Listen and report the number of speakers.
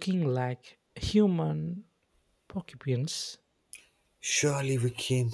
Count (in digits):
2